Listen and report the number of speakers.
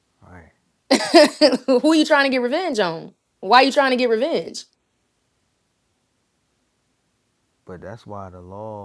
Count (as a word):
two